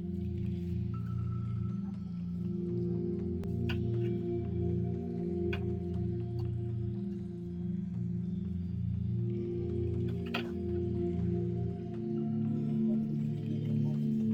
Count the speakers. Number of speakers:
zero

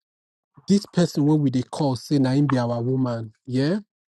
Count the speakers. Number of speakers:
one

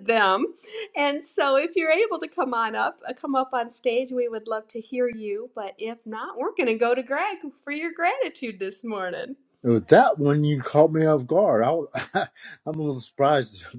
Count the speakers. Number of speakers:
two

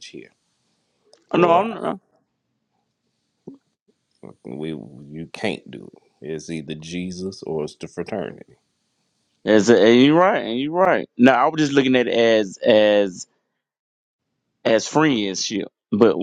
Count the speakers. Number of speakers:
two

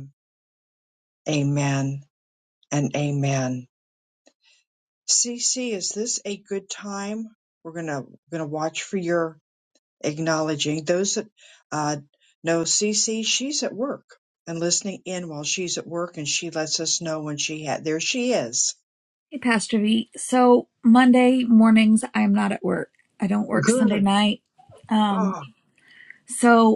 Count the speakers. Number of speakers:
two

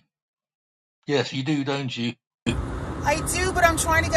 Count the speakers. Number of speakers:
two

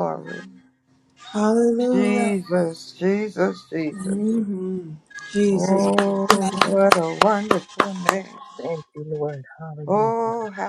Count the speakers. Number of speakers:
three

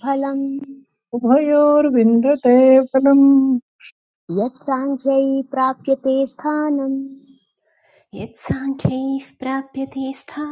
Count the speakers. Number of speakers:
three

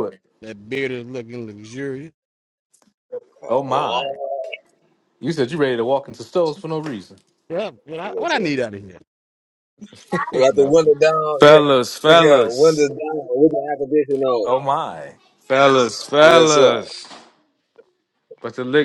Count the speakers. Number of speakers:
four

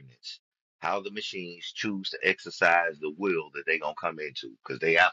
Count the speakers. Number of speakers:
one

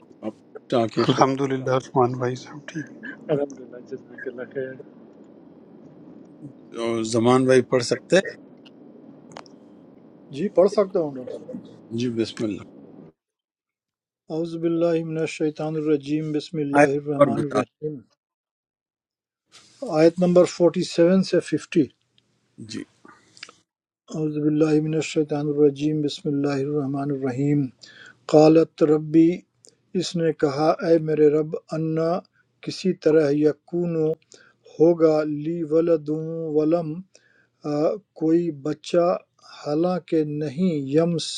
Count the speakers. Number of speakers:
four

